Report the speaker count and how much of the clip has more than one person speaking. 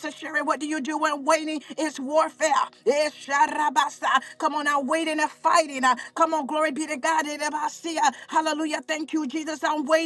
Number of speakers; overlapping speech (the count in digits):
1, no overlap